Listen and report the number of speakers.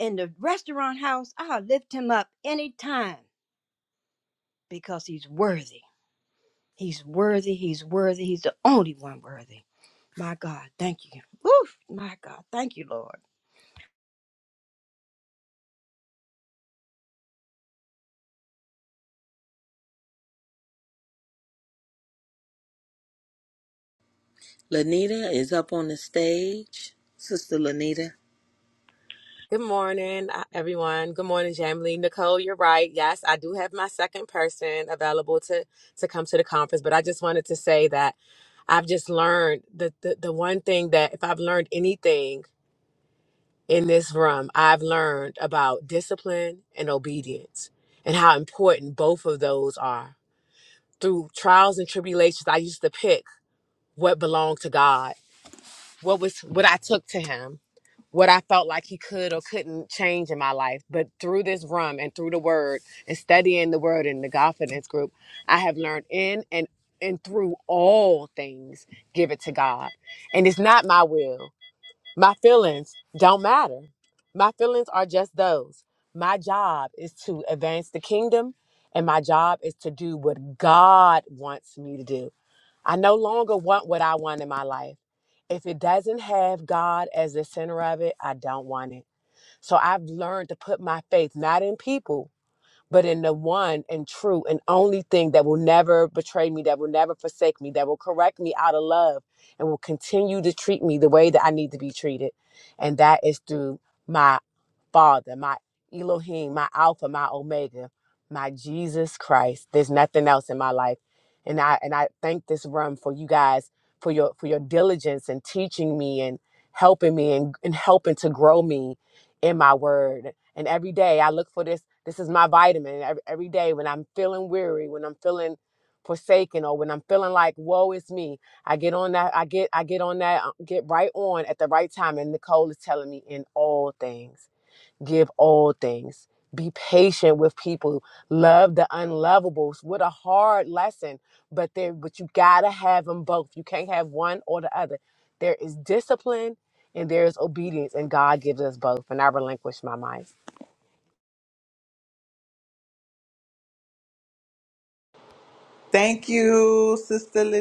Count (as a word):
four